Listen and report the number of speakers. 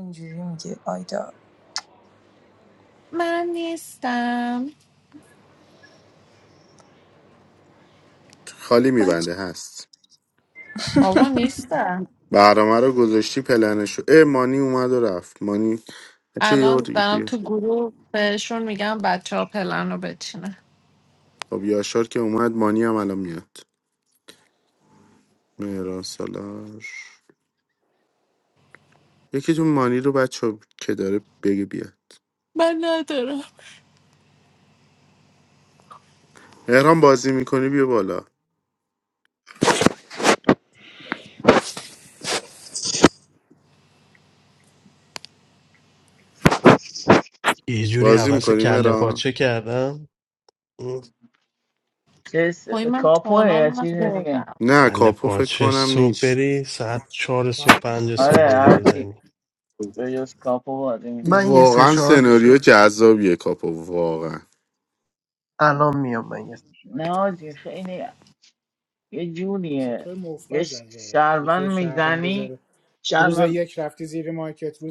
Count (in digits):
7